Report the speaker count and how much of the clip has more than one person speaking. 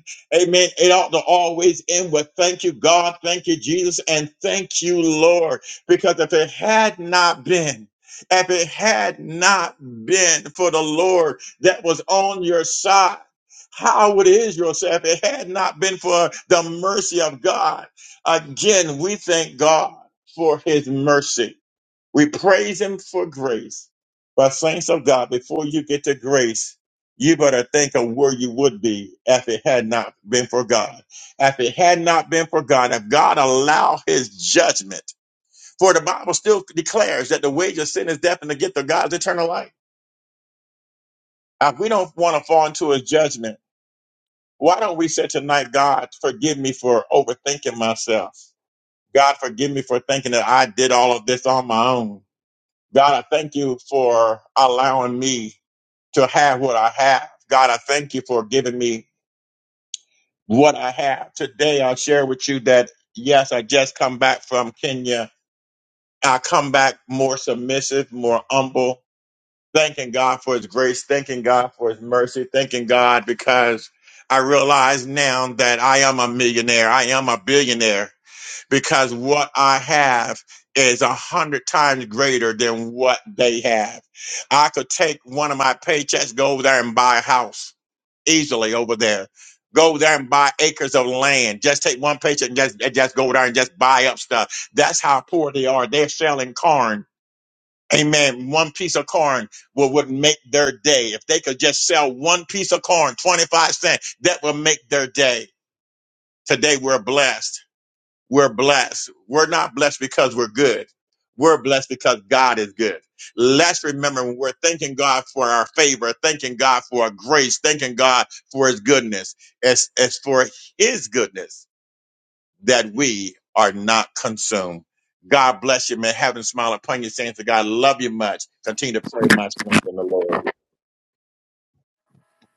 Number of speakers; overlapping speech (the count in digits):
1, no overlap